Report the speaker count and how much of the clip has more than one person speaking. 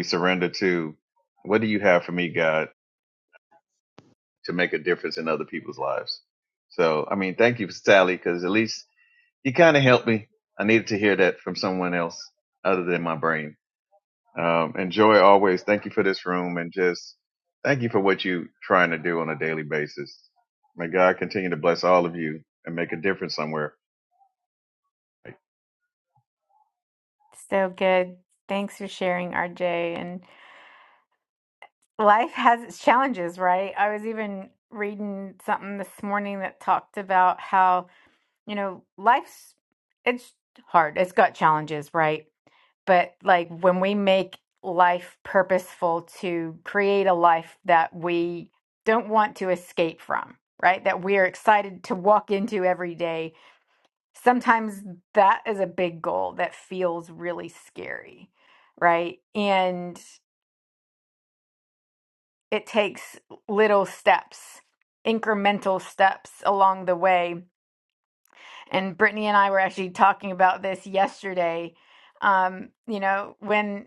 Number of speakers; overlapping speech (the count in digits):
2, no overlap